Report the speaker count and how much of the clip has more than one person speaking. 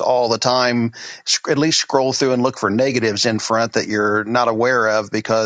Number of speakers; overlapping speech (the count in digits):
1, no overlap